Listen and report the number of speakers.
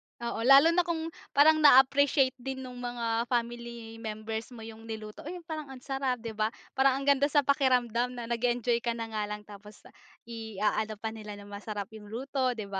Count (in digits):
1